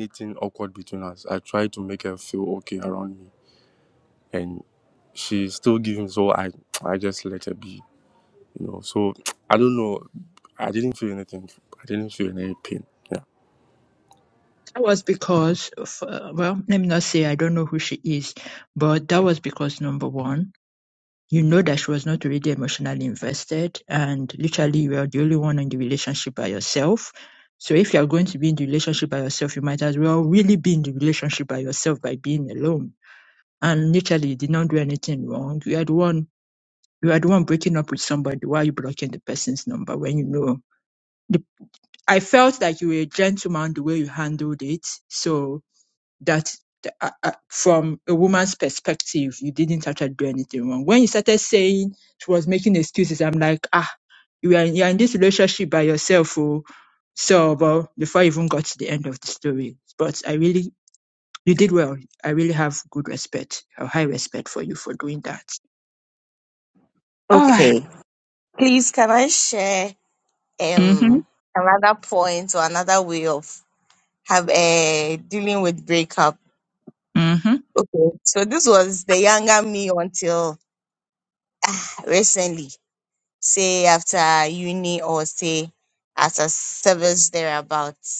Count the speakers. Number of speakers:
3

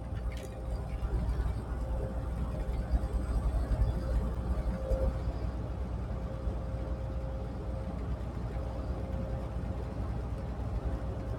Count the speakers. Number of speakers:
0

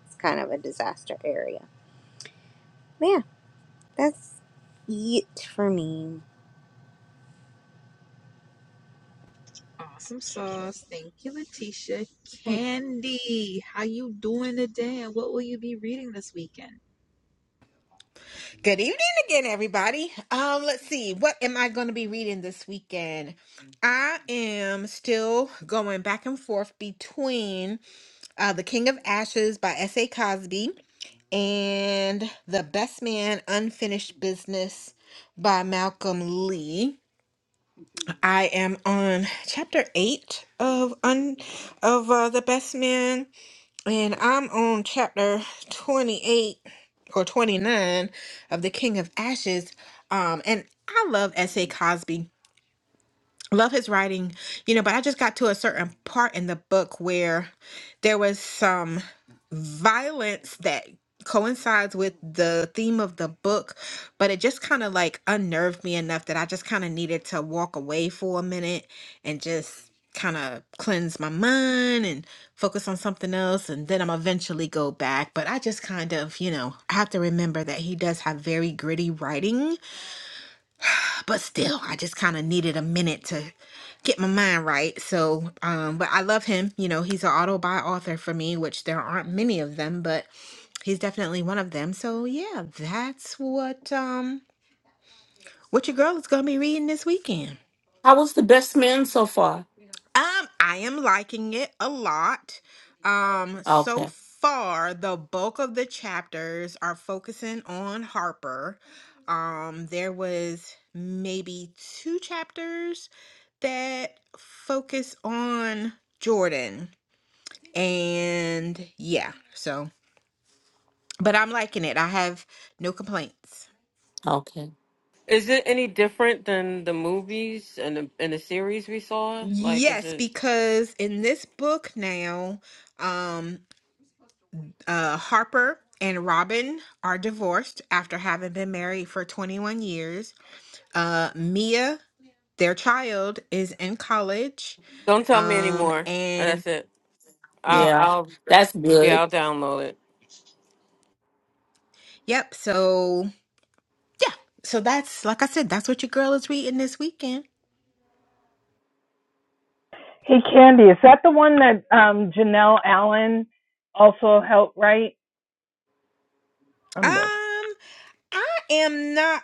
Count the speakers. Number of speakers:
6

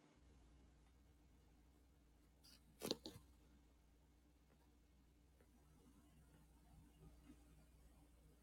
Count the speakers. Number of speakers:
0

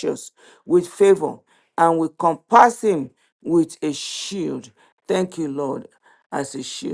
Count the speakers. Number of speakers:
1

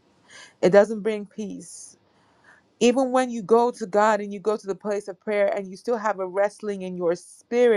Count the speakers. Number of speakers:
1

